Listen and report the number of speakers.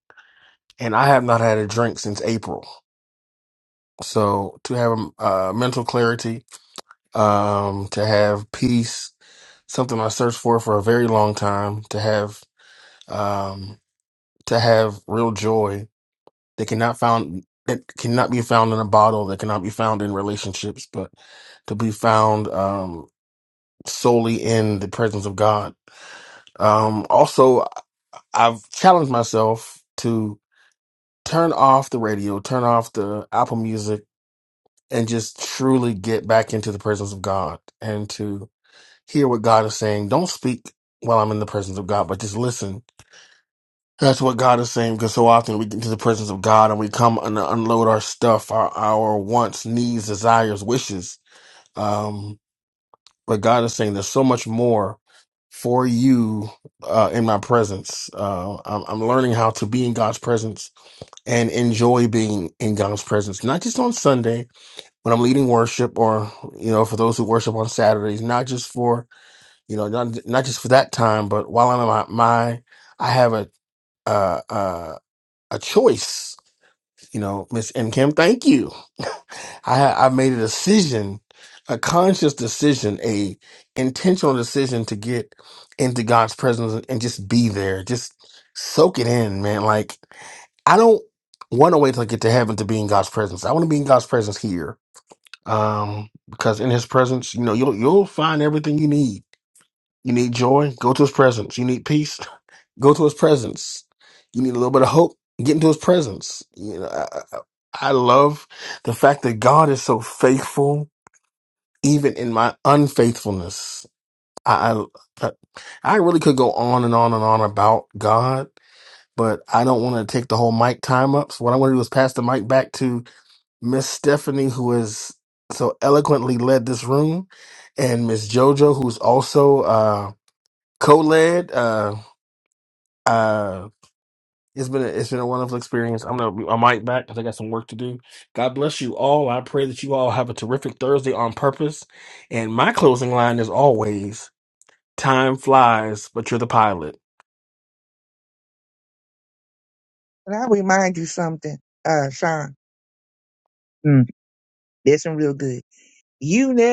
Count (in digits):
2